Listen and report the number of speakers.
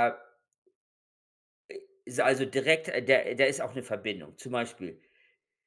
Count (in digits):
1